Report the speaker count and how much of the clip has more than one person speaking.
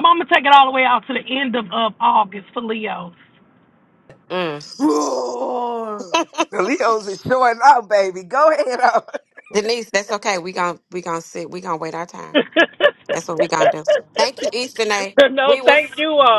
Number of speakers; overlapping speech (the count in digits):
4, about 3%